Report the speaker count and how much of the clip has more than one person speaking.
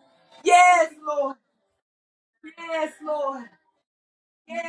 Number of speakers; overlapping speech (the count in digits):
1, no overlap